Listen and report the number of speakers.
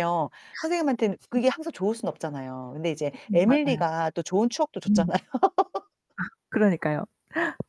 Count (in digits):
2